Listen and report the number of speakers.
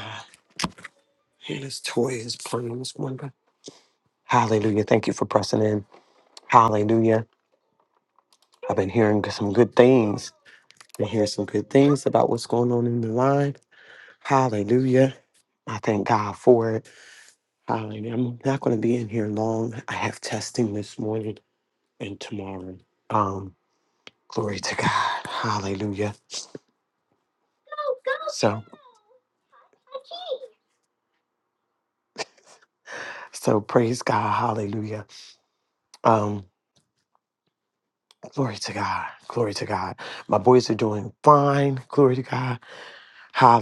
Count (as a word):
one